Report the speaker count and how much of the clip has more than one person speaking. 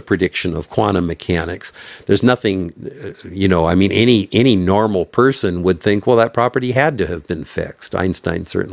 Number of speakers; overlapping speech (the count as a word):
one, no overlap